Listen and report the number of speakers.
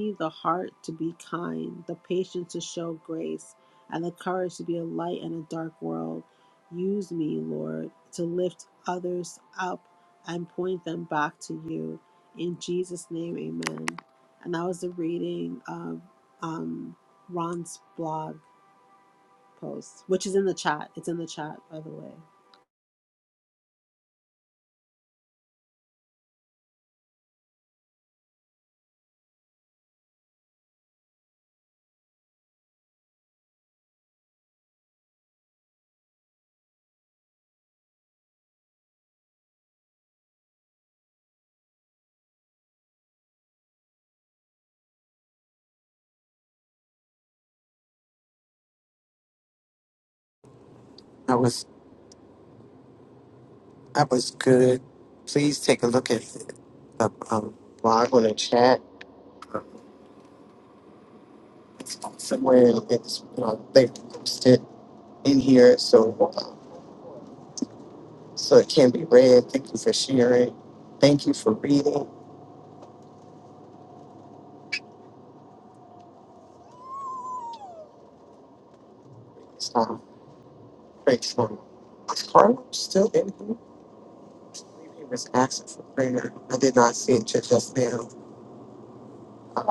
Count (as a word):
two